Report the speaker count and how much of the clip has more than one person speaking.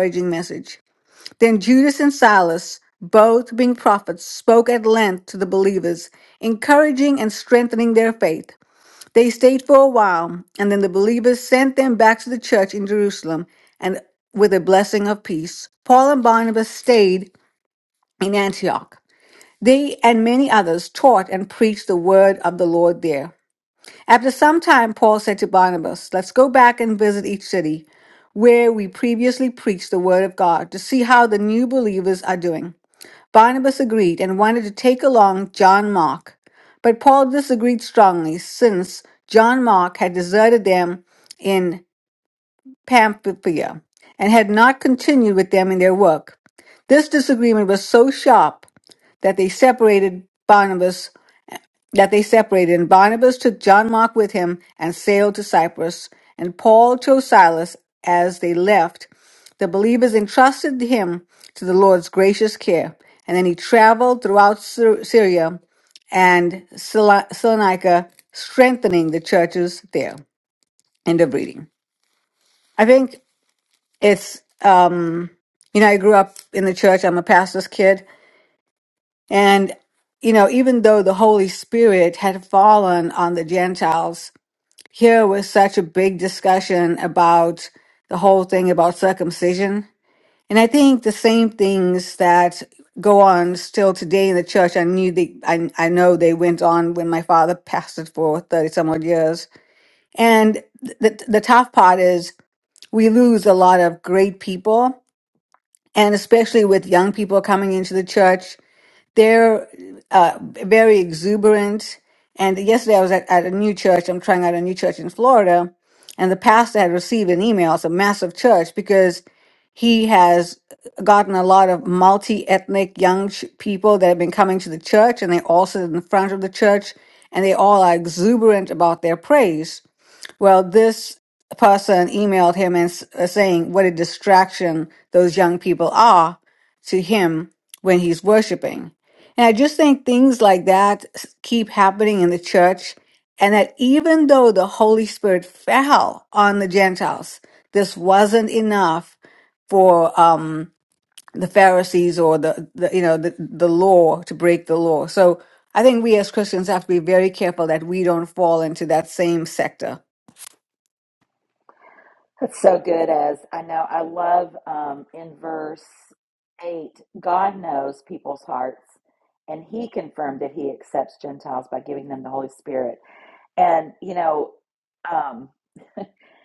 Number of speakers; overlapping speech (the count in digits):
2, no overlap